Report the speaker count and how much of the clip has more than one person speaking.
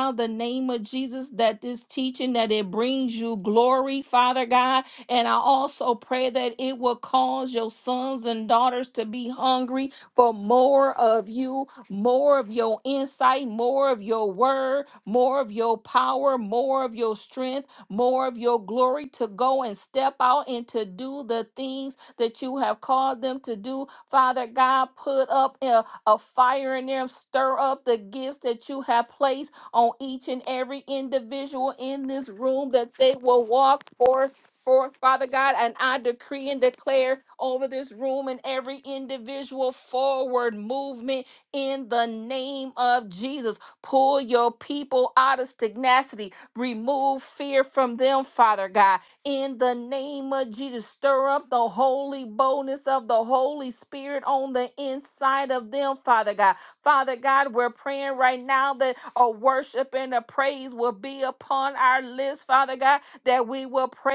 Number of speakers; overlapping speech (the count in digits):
1, no overlap